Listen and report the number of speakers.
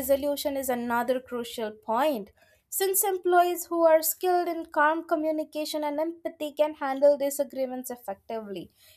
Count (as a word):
one